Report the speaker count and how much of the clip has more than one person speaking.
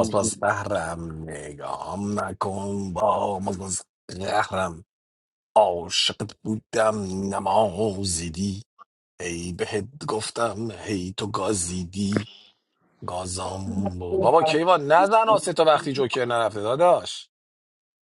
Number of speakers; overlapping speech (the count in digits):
1, no overlap